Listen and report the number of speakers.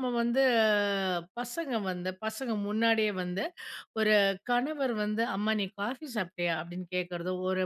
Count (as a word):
one